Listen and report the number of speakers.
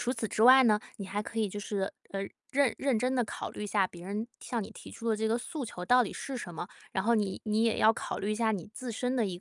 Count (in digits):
1